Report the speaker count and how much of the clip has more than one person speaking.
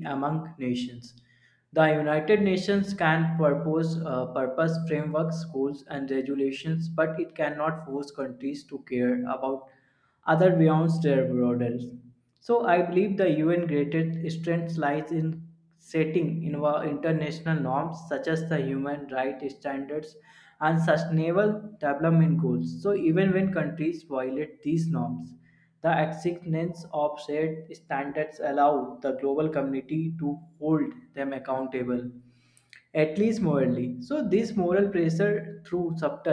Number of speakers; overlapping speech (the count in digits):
1, no overlap